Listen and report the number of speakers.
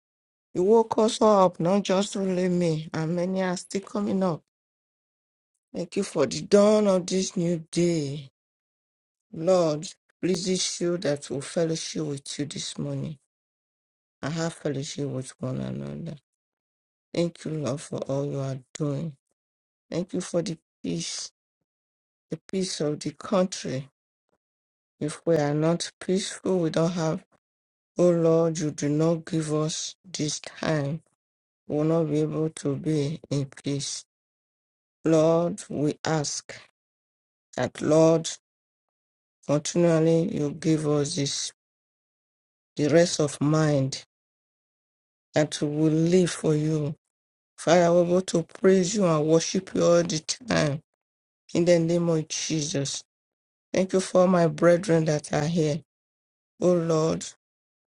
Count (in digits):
1